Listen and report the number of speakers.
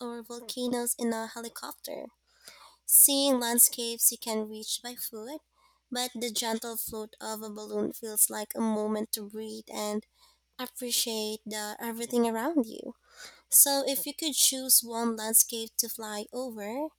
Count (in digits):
1